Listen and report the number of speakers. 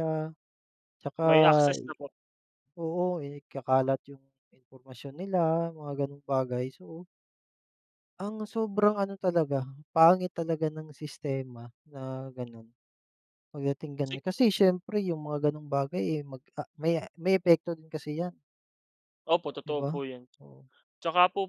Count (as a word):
two